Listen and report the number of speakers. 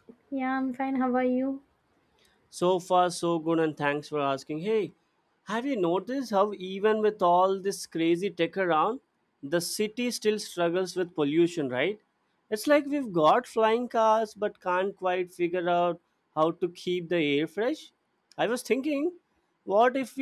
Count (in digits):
2